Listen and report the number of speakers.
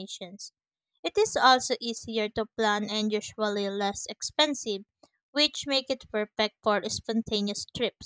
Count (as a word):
one